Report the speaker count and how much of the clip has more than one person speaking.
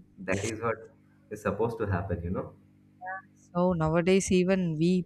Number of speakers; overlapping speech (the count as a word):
two, no overlap